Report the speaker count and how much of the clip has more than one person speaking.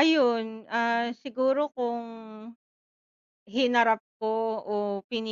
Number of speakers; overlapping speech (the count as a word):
one, no overlap